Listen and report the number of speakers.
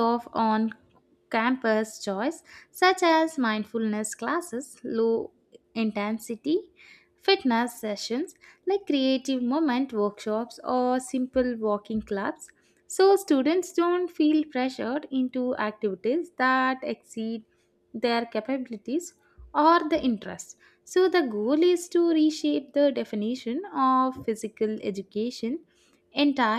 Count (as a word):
one